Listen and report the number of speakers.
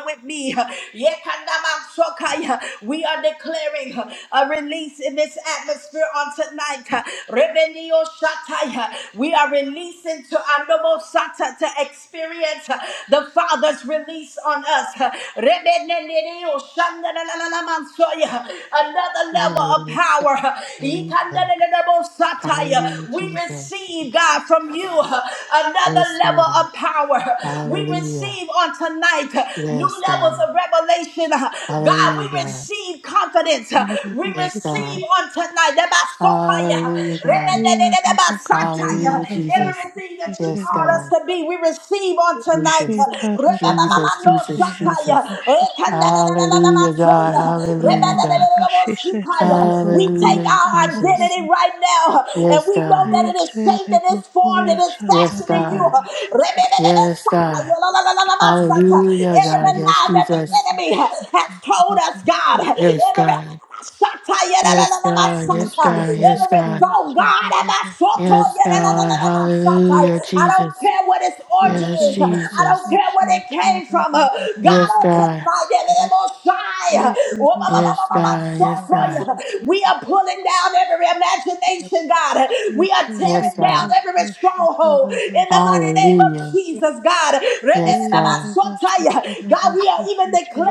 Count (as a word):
three